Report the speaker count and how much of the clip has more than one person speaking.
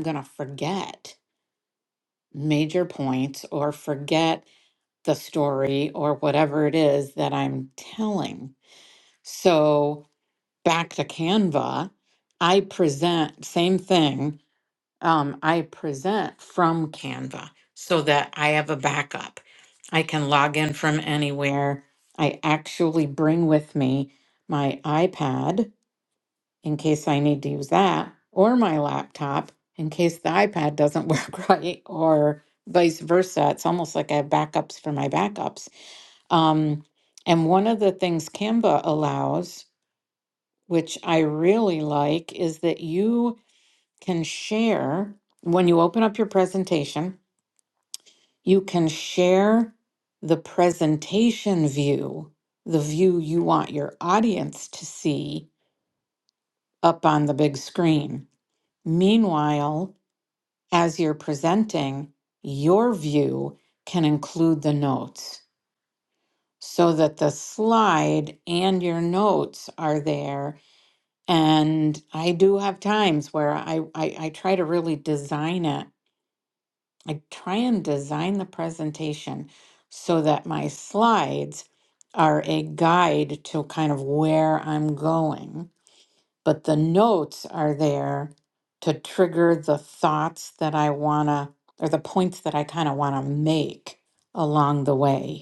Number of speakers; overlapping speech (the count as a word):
one, no overlap